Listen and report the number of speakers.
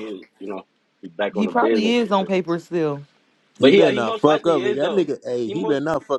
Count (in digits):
3